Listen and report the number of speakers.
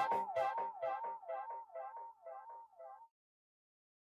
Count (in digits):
0